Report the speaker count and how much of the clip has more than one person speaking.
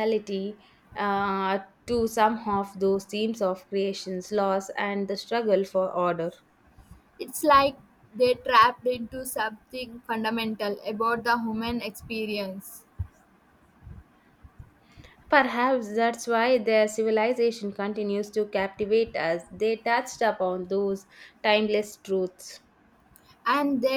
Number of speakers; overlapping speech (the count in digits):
2, no overlap